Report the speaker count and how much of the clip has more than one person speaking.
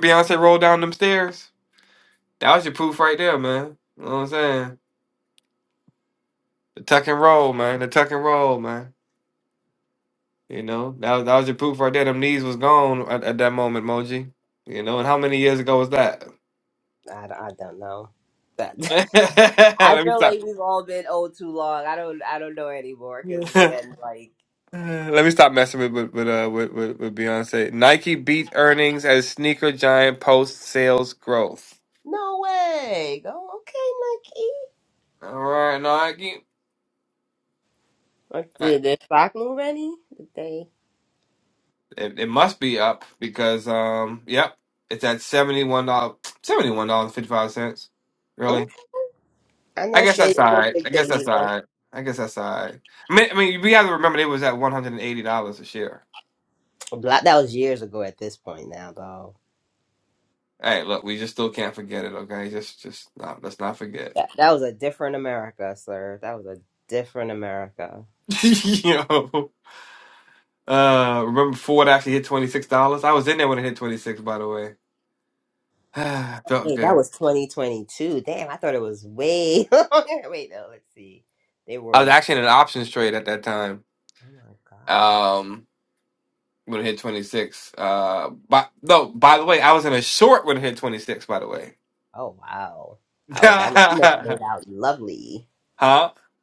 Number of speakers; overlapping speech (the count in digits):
2, about 3%